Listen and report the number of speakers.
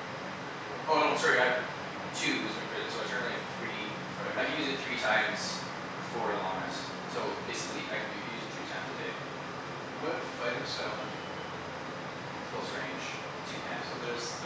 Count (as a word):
two